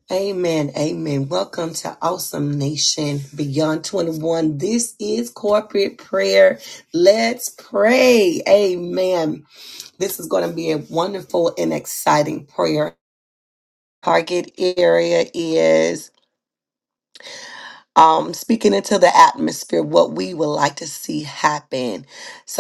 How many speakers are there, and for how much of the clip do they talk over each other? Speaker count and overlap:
one, no overlap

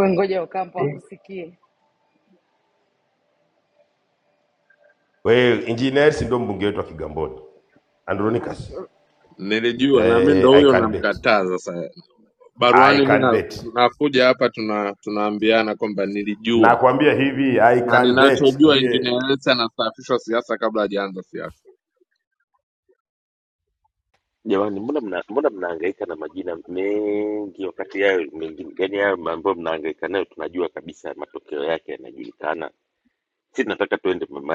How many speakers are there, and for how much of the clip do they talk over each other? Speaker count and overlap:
four, about 11%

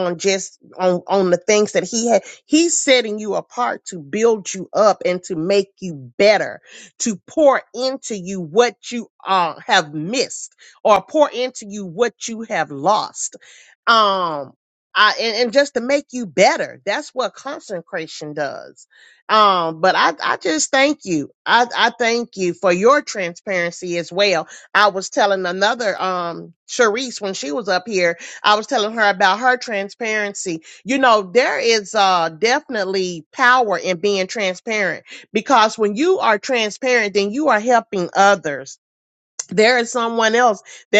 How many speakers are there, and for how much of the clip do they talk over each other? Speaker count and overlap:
one, no overlap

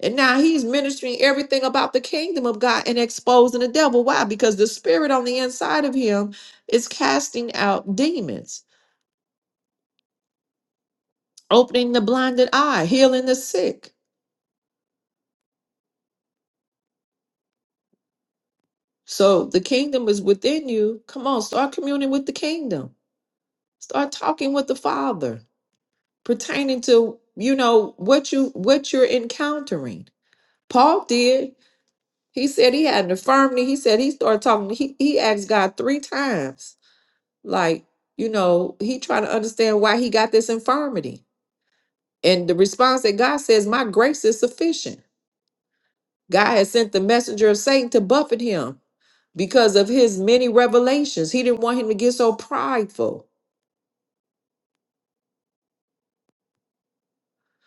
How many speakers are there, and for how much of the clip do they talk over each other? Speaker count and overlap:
one, no overlap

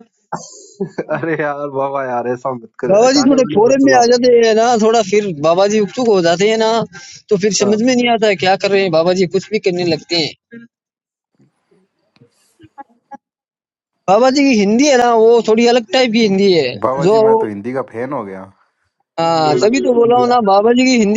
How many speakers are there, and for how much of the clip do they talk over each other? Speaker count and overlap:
three, about 13%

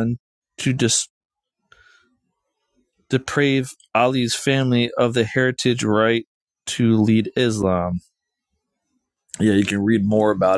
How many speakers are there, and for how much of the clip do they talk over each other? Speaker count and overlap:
one, no overlap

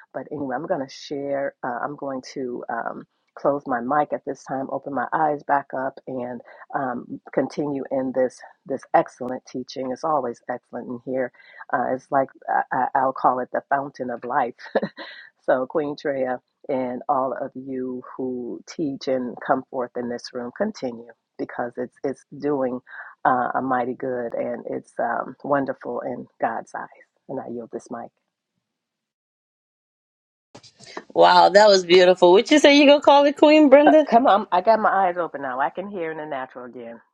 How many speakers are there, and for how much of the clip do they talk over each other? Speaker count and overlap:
two, about 1%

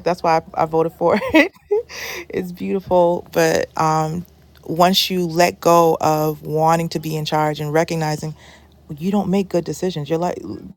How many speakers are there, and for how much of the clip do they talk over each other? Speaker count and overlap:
one, no overlap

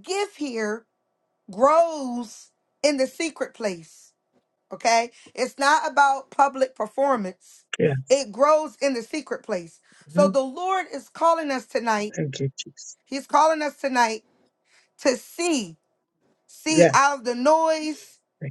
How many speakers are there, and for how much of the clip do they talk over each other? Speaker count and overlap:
two, about 2%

